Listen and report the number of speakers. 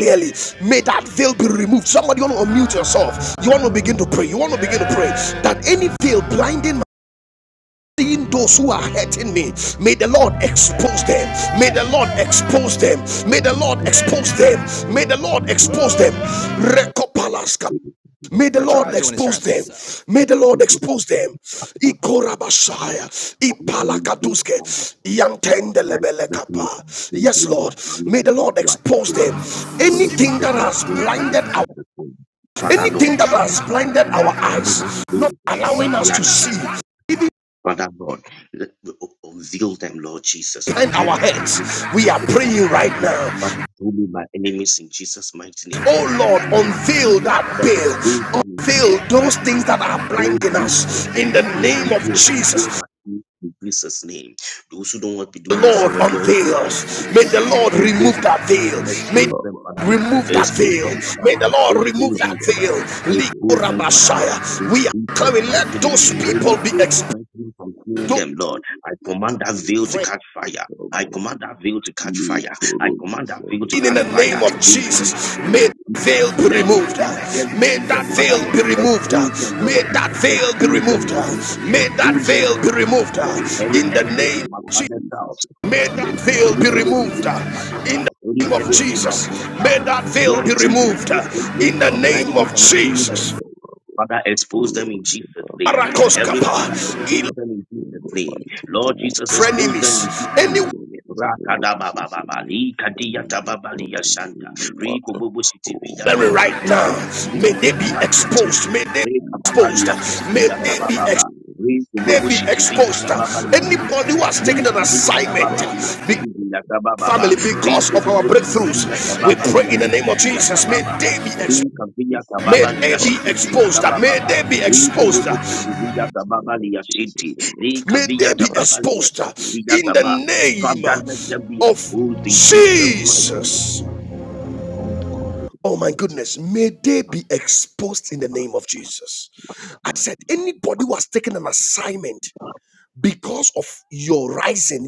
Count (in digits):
3